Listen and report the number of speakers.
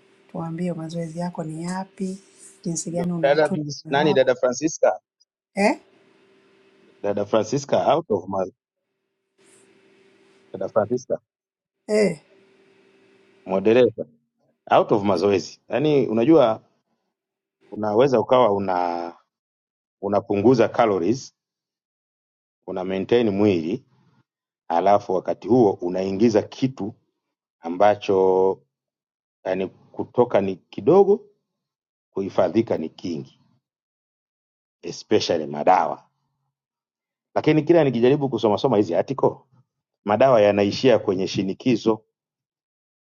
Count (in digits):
2